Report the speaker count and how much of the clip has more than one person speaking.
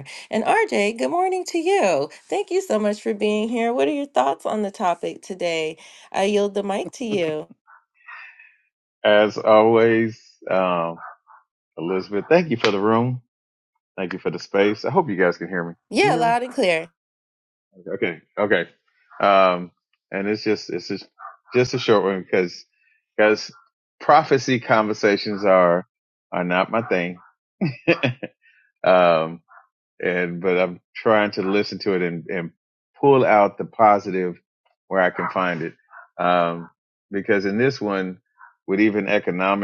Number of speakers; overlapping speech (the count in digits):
2, about 1%